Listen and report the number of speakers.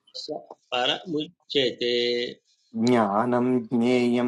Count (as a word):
two